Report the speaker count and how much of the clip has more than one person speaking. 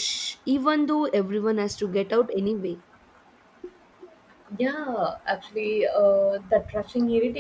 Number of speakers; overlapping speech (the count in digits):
2, no overlap